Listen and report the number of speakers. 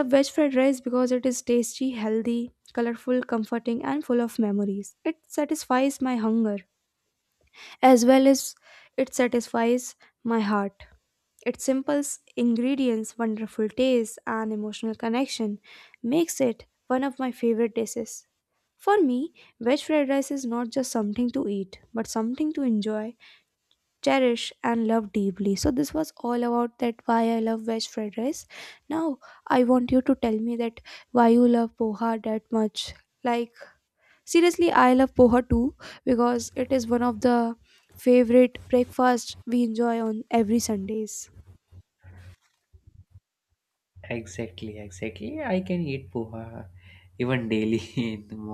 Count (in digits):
2